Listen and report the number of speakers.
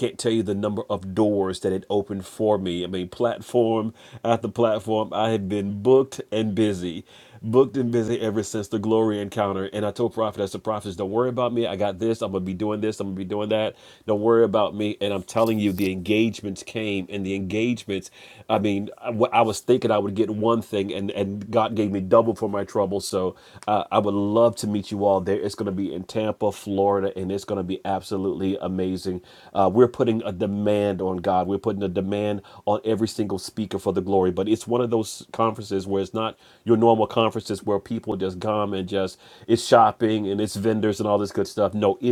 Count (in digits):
1